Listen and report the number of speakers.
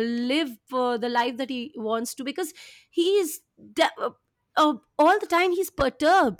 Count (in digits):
1